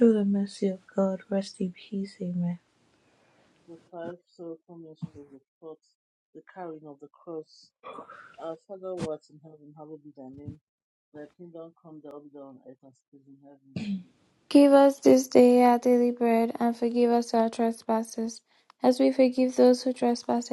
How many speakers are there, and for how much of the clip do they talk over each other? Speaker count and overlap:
3, no overlap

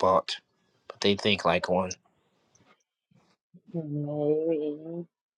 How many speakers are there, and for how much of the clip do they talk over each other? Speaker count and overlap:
2, no overlap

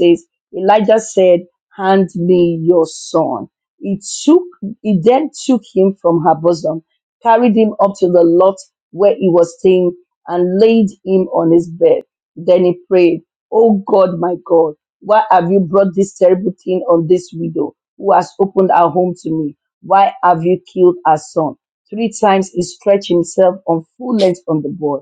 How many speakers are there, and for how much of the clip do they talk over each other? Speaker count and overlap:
1, no overlap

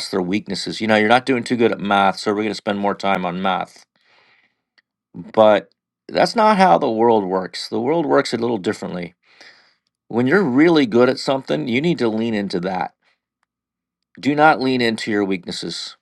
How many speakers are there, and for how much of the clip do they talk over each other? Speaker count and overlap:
1, no overlap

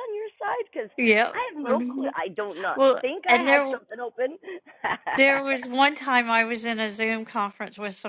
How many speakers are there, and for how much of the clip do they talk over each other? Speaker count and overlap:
2, about 23%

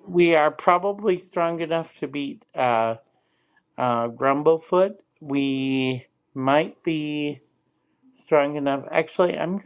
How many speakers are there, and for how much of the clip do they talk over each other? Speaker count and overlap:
1, no overlap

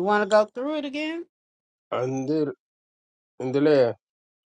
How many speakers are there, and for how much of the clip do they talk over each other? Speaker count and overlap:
2, no overlap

